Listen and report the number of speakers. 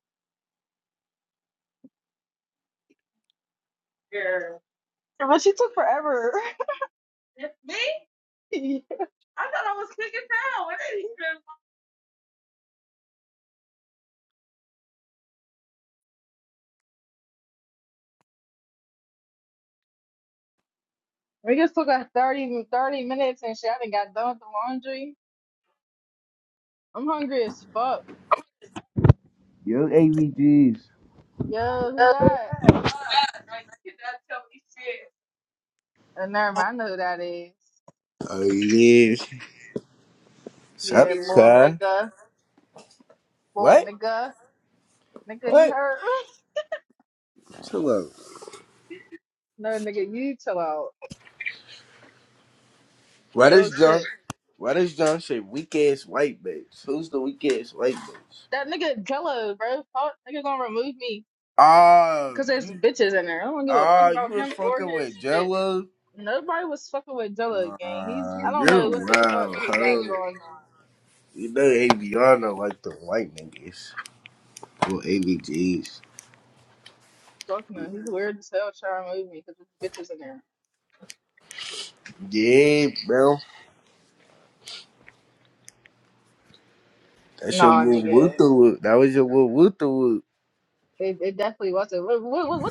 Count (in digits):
2